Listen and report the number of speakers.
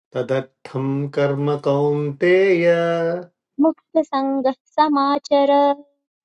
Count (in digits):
2